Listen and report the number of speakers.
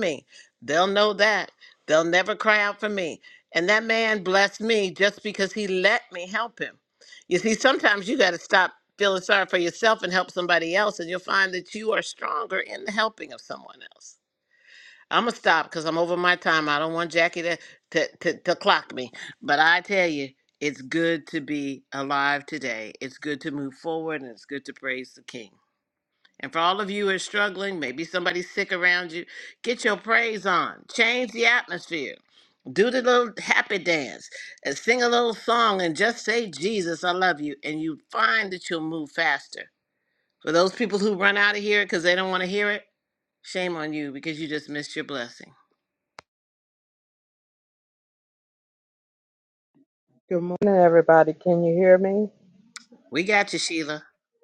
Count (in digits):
2